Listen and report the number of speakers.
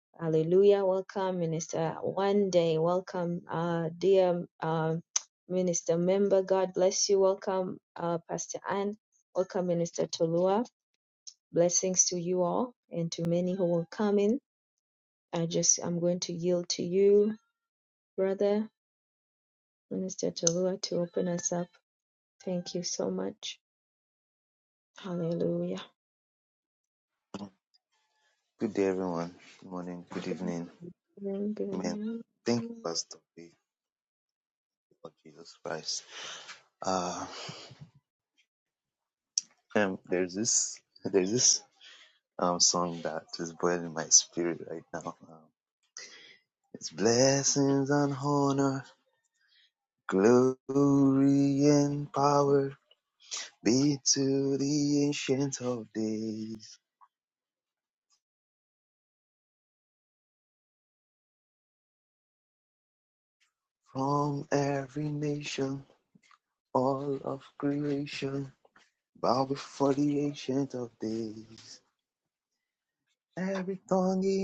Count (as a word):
two